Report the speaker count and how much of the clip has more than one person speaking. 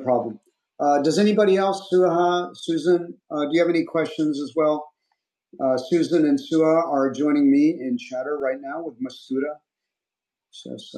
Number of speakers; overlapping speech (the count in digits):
1, no overlap